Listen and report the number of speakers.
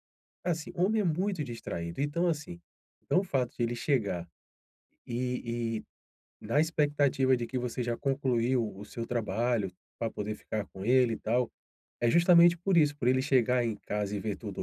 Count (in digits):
1